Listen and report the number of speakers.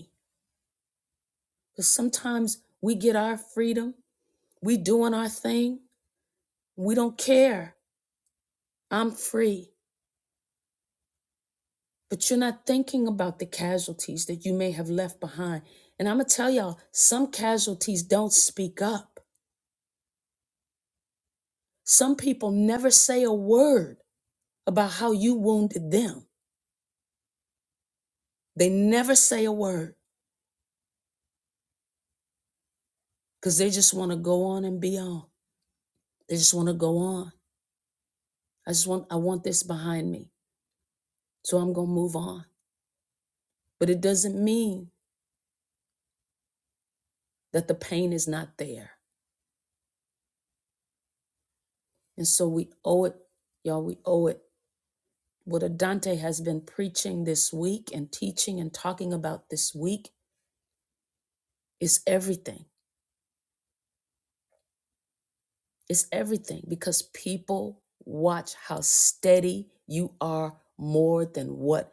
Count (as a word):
one